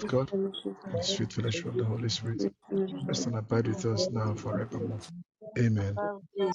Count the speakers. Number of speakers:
3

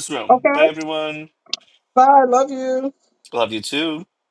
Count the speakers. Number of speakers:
2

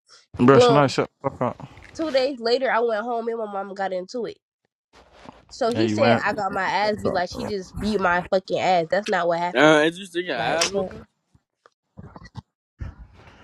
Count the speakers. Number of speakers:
3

